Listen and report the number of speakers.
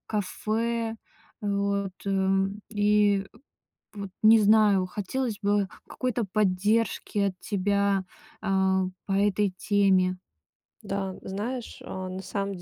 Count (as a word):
two